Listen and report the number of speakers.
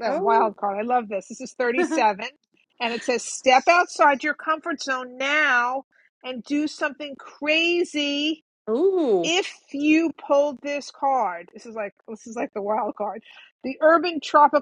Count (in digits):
2